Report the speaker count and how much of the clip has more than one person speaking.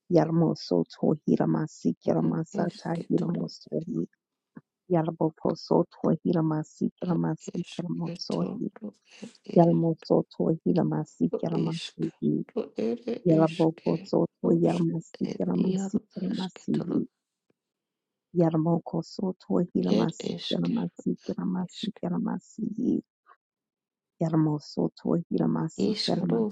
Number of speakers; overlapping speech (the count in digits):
2, about 32%